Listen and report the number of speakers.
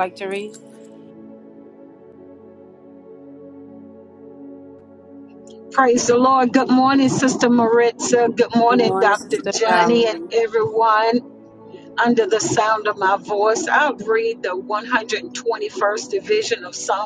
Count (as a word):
two